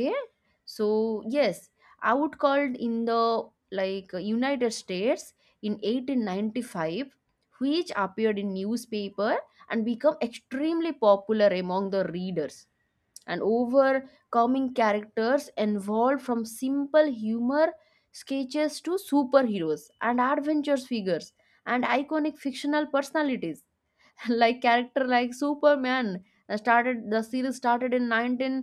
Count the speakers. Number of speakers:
one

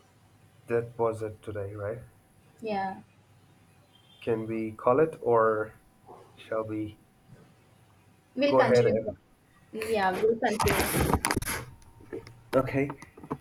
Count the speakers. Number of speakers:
two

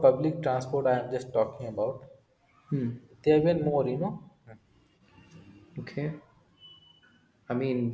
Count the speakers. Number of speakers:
two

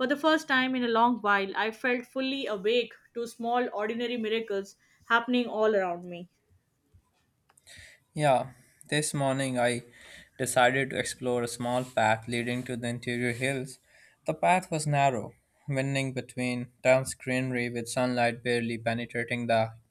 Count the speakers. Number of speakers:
two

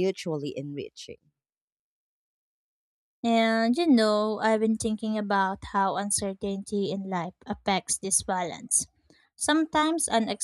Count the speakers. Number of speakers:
two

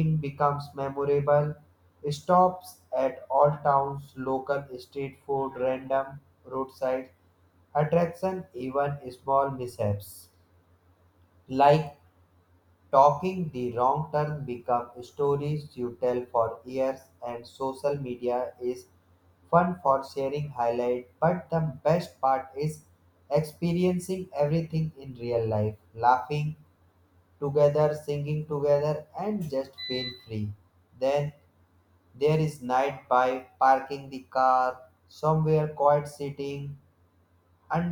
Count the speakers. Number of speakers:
one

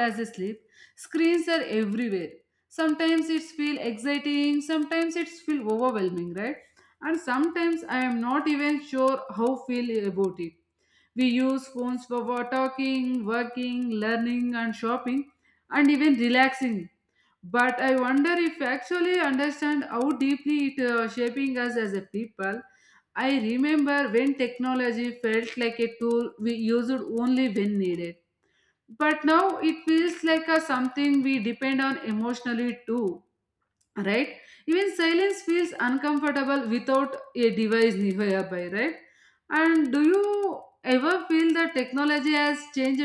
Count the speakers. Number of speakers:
one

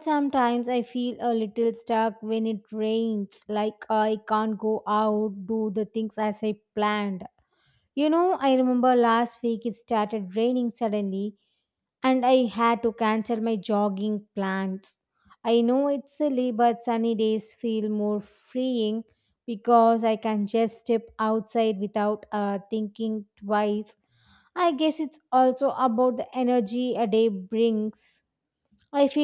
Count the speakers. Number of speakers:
one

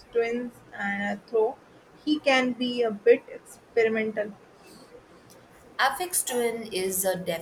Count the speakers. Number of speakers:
two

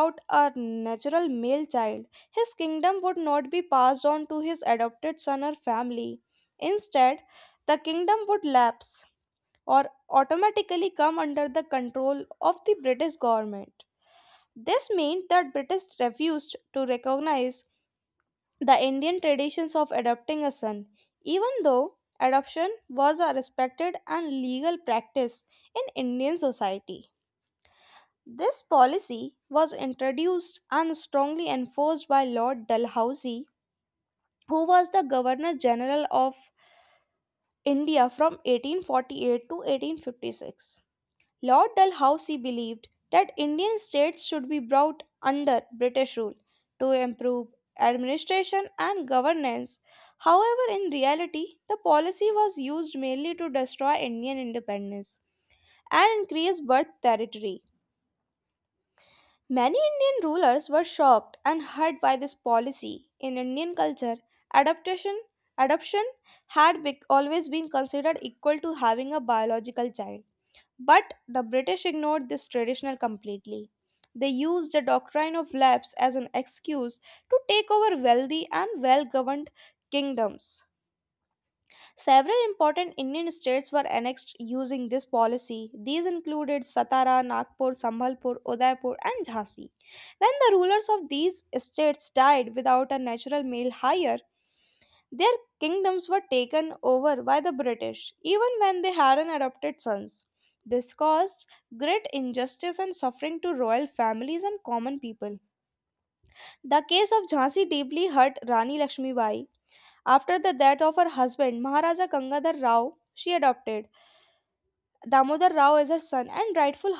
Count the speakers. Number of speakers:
one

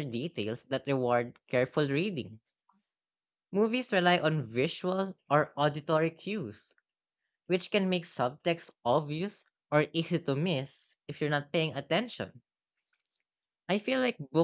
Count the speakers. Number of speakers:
one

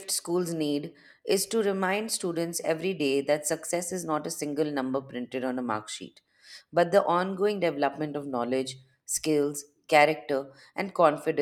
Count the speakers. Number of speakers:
one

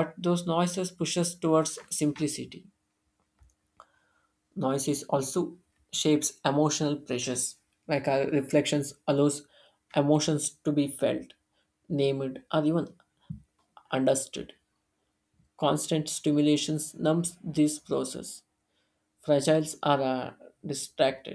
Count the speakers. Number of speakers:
one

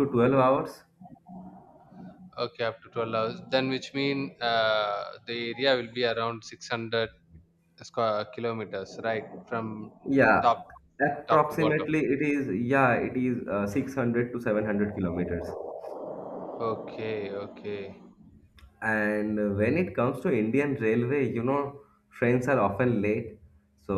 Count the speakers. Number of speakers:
two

